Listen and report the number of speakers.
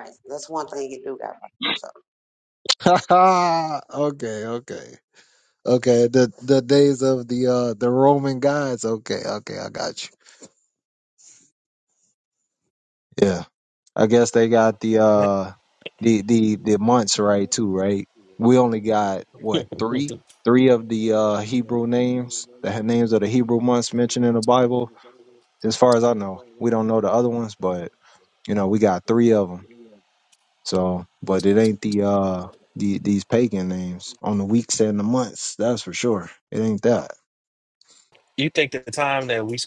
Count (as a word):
three